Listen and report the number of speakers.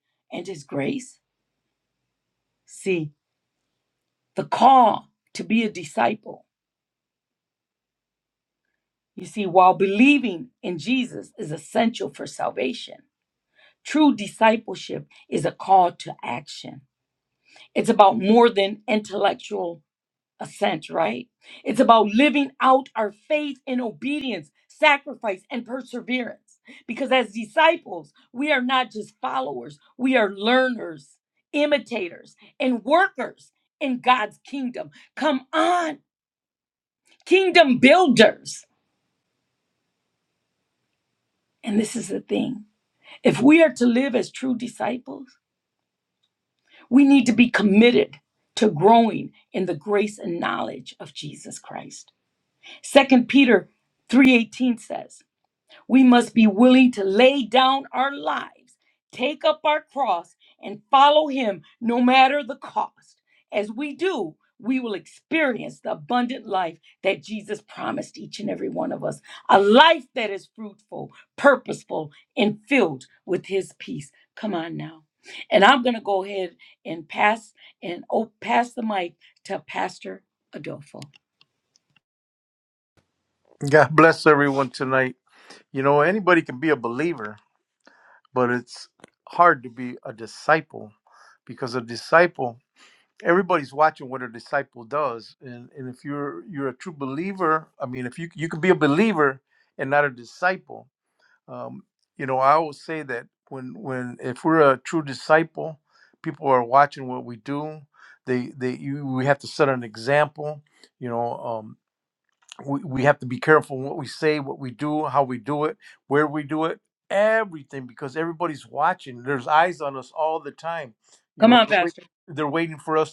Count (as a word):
two